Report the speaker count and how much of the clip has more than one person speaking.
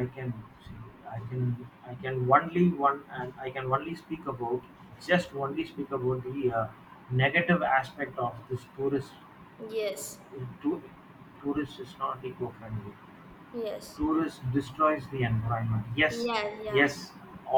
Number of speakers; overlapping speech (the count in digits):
2, about 1%